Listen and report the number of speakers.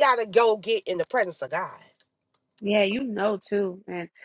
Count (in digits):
2